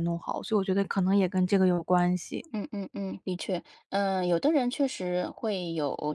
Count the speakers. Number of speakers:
2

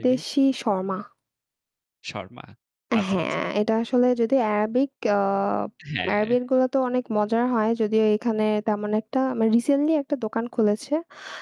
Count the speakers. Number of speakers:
2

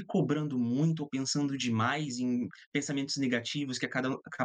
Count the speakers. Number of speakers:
1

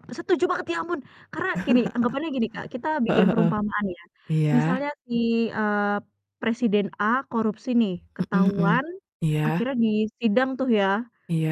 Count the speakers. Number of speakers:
2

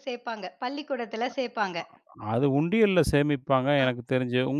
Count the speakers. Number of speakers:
2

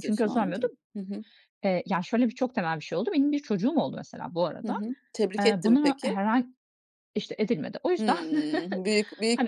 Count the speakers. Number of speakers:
2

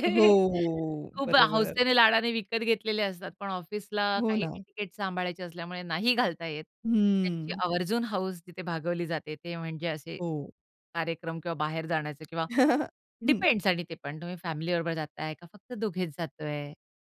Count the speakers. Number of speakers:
2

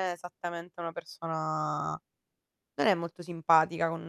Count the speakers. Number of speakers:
1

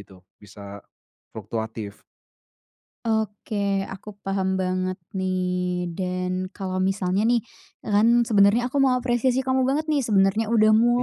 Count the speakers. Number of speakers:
2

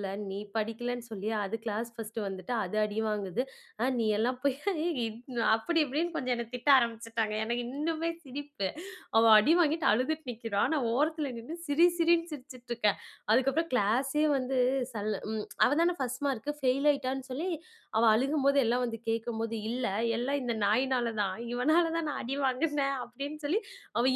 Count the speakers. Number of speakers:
1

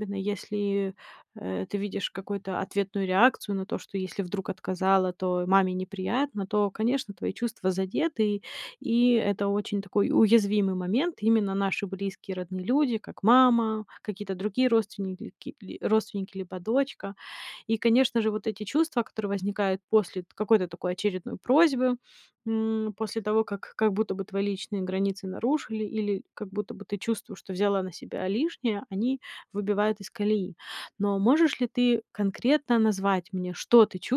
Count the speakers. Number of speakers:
1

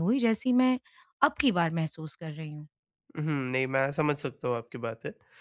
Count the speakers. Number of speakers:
2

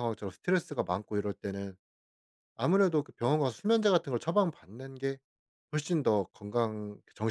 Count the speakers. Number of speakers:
1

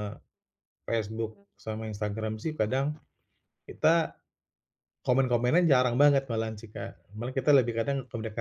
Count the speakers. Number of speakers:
1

